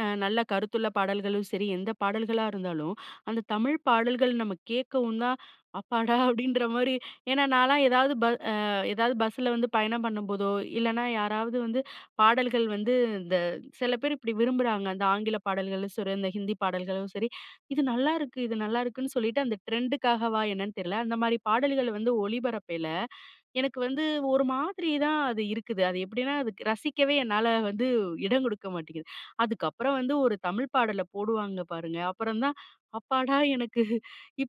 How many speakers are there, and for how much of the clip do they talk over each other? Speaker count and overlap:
one, no overlap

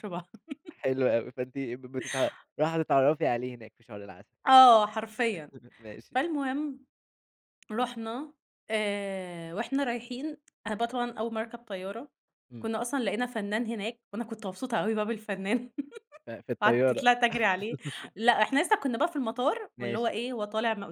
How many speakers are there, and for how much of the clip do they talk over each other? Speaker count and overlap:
two, about 4%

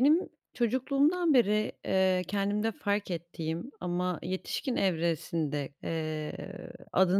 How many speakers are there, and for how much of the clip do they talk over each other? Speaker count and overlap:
one, no overlap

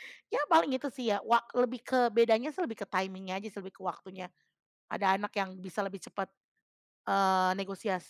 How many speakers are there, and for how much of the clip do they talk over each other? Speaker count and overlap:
one, no overlap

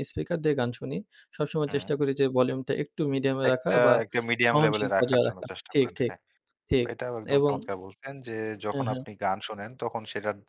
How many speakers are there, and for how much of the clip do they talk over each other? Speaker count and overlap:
two, about 29%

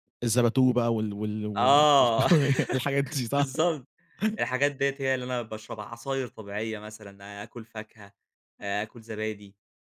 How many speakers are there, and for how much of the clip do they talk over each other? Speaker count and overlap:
two, about 5%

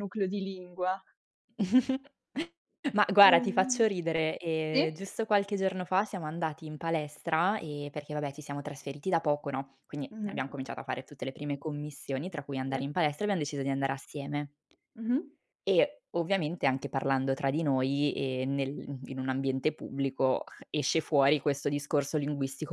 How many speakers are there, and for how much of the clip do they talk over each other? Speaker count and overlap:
two, about 5%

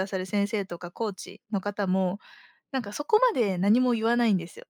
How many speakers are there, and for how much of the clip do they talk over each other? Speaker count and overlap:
one, no overlap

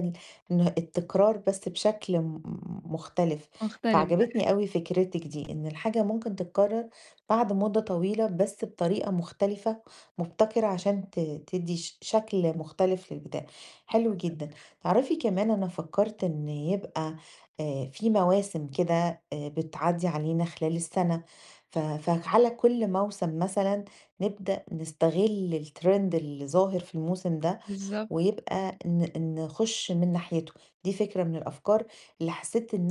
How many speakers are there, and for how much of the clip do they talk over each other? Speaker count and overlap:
two, about 2%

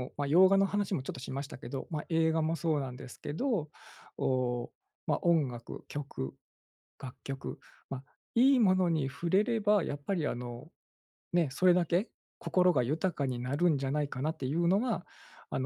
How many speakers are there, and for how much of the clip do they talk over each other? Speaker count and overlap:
one, no overlap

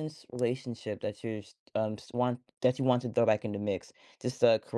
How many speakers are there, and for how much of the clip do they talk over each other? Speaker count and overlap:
one, no overlap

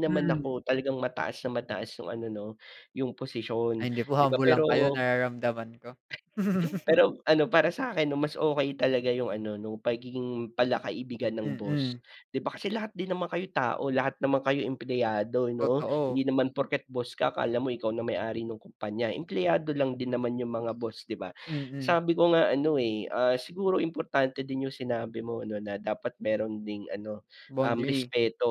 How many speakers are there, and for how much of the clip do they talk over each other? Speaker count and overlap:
two, about 9%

